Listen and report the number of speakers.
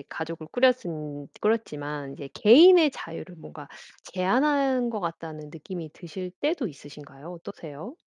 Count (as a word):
one